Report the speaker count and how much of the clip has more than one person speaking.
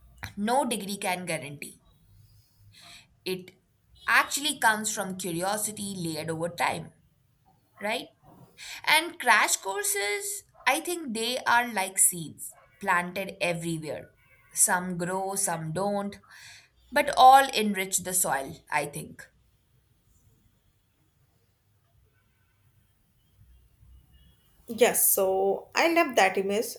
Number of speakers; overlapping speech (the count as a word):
two, no overlap